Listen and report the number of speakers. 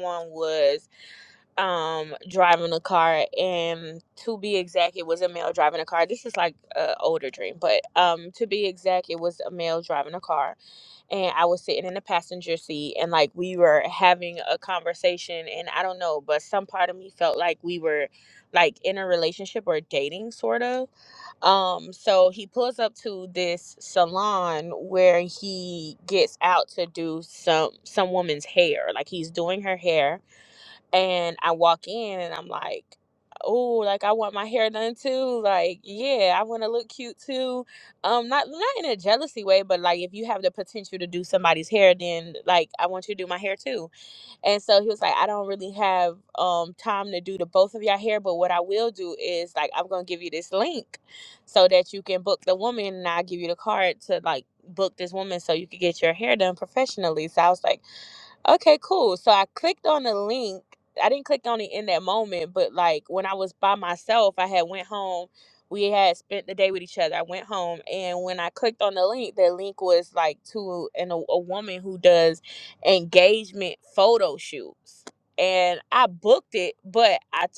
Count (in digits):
1